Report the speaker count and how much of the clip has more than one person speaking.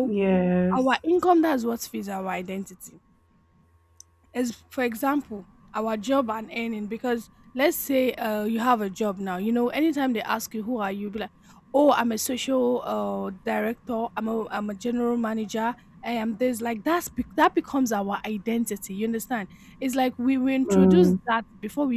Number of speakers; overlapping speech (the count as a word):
two, about 3%